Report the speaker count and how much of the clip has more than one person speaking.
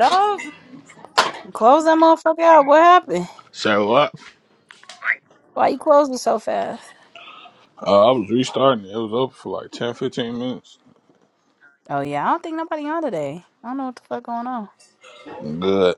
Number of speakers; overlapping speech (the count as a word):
two, no overlap